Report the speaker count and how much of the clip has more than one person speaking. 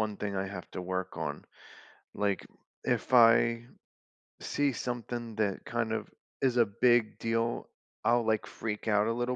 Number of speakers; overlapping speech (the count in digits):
1, no overlap